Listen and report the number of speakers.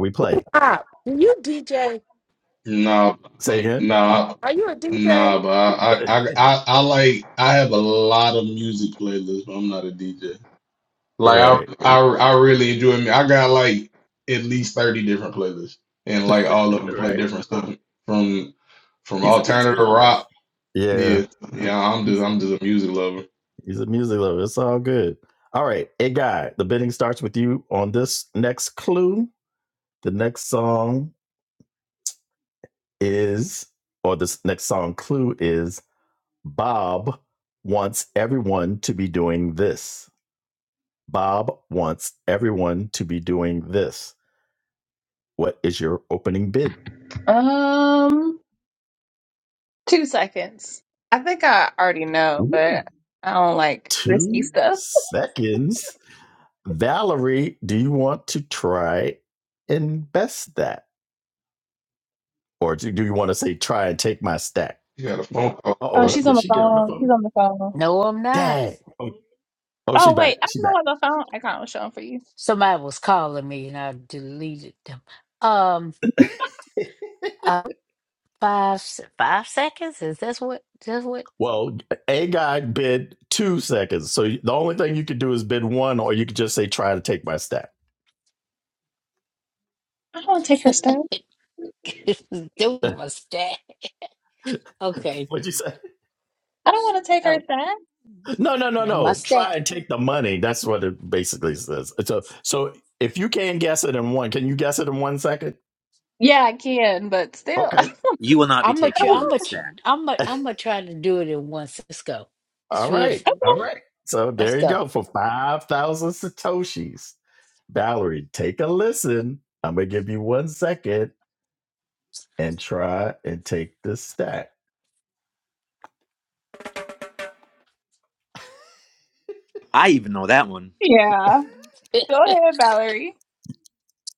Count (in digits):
6